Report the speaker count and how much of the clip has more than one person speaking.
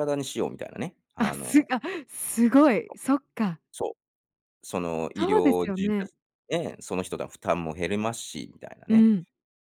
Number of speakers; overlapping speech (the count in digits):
2, about 14%